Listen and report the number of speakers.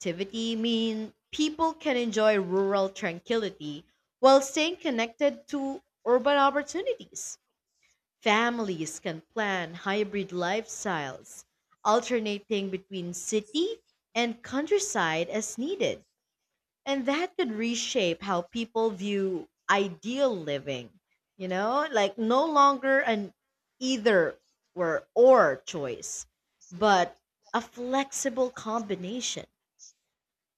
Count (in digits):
1